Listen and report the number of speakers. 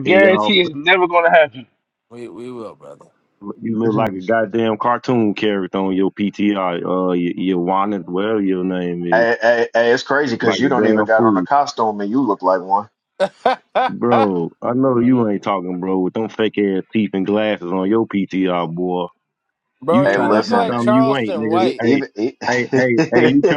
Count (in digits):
4